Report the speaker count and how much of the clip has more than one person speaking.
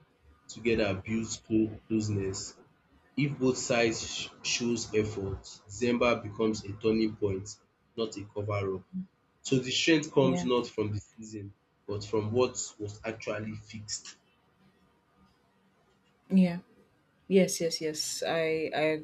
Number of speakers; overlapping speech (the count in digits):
2, about 1%